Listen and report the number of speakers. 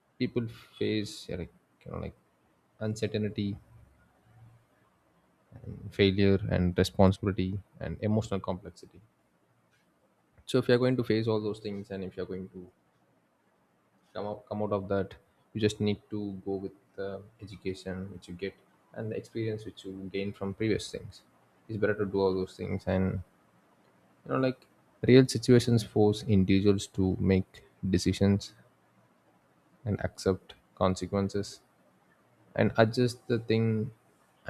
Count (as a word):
one